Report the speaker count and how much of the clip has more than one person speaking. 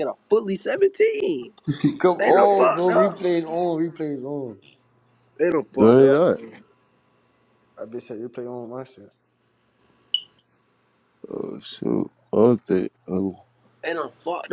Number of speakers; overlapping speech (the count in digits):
3, about 12%